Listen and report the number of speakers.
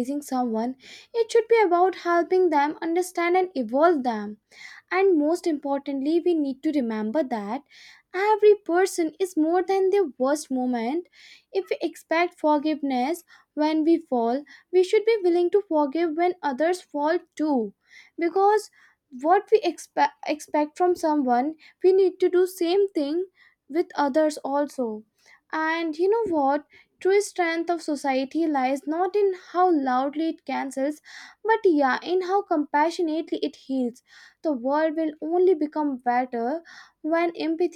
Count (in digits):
1